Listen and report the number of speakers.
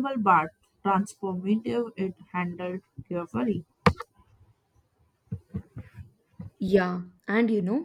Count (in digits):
2